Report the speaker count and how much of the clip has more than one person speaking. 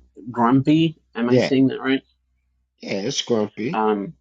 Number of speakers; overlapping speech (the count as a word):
two, about 7%